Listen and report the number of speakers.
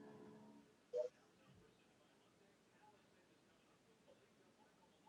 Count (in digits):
0